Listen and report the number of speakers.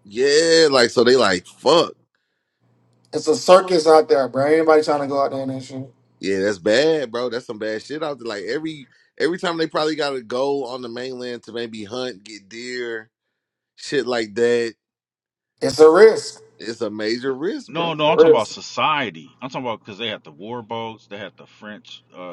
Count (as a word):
three